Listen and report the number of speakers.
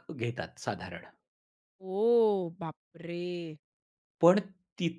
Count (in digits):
2